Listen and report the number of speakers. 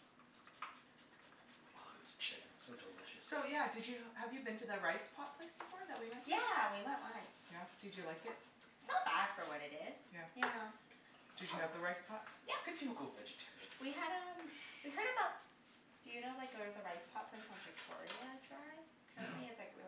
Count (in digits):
3